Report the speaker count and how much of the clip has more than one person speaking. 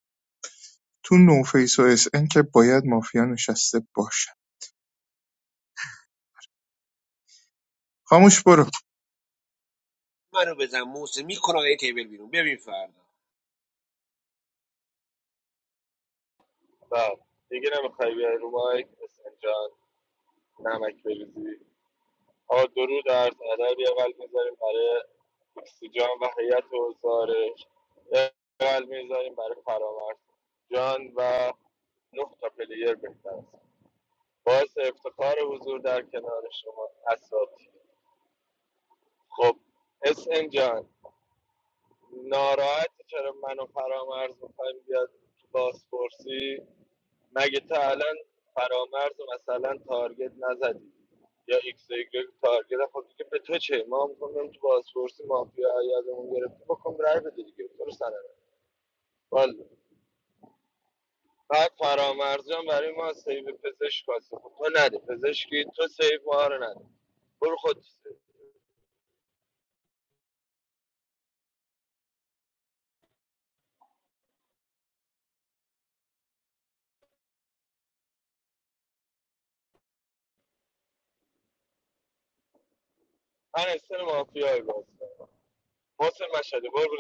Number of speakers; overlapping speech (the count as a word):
three, no overlap